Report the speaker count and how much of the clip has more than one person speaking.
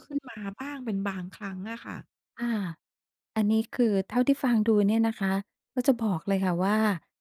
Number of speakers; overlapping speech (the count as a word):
two, about 3%